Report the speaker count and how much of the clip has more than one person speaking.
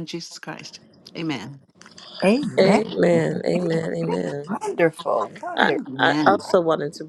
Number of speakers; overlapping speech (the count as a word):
three, about 18%